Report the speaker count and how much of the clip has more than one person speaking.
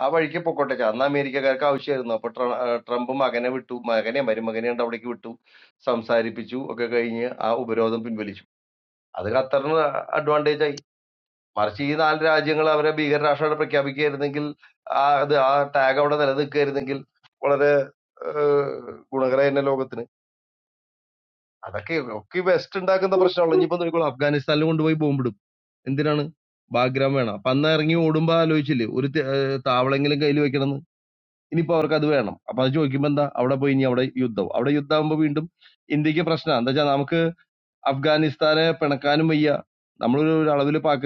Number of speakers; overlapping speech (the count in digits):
1, no overlap